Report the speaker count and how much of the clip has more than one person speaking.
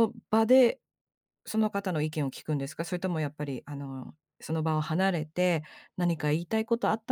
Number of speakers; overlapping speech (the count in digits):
1, no overlap